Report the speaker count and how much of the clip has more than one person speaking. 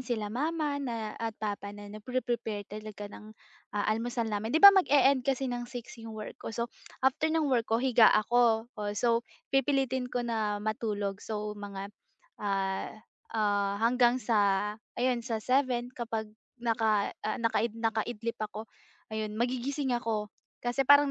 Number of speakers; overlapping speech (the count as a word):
one, no overlap